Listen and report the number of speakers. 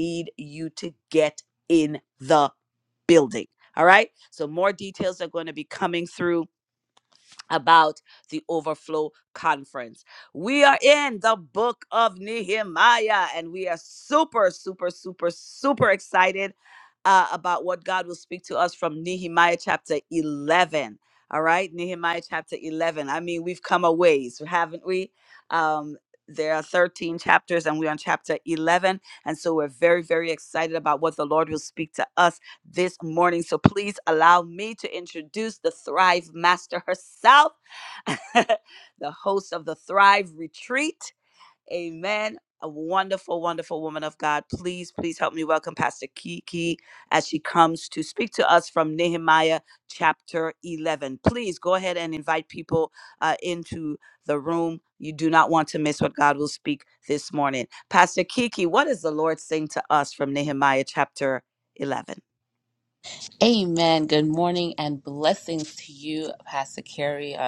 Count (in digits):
2